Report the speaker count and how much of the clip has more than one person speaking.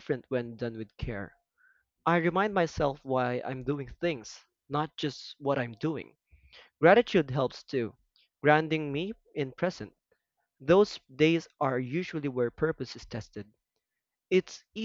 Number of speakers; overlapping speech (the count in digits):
1, no overlap